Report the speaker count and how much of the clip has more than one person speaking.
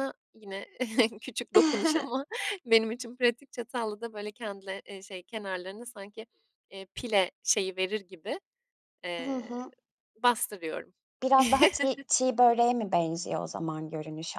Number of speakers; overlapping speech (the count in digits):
2, about 3%